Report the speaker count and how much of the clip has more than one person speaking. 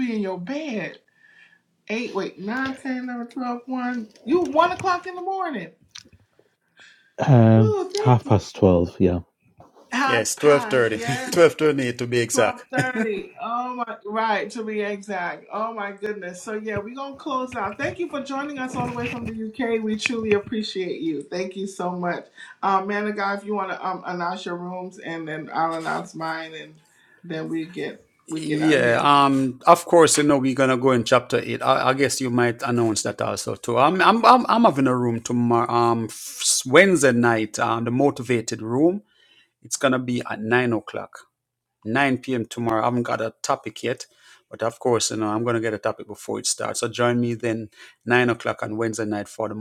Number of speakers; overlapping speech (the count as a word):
three, about 6%